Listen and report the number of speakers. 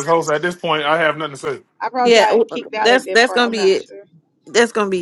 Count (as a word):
three